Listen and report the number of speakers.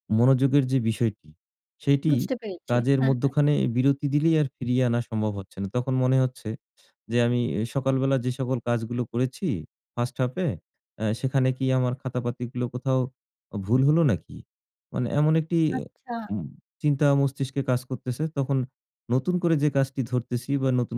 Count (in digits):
2